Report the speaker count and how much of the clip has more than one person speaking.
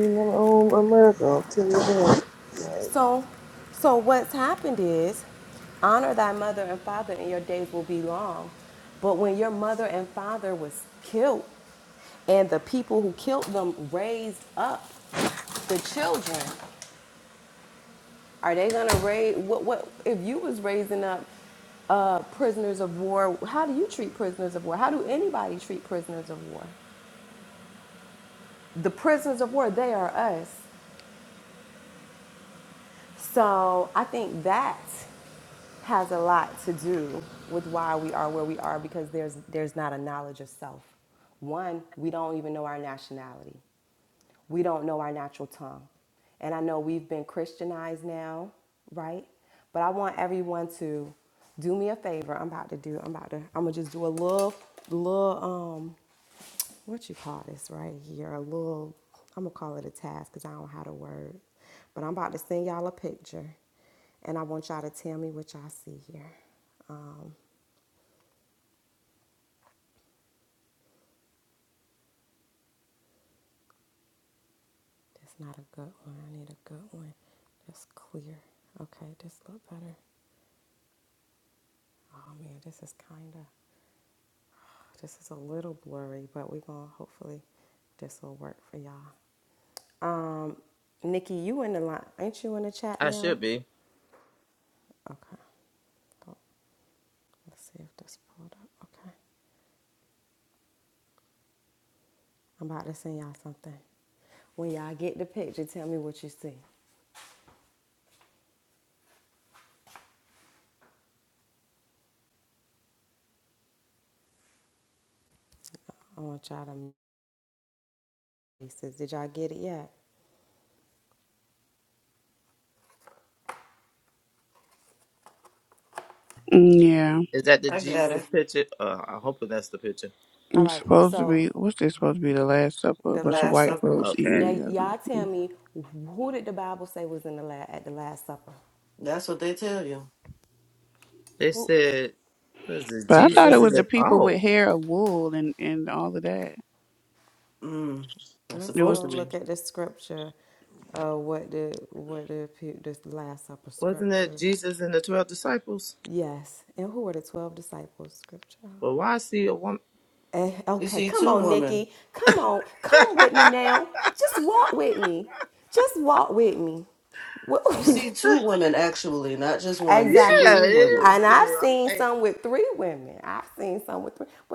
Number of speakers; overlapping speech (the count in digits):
5, about 6%